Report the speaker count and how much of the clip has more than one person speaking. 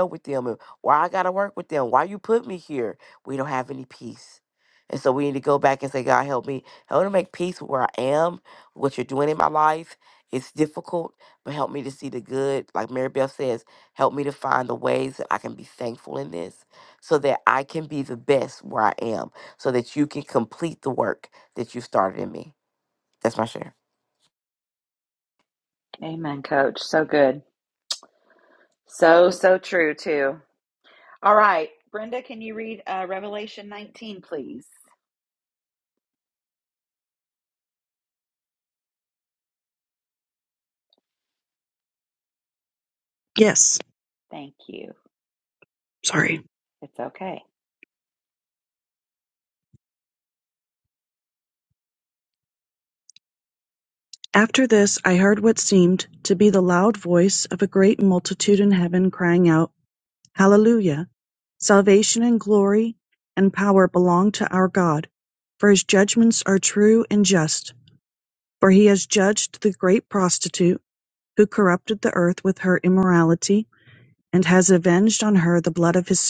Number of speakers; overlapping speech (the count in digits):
3, no overlap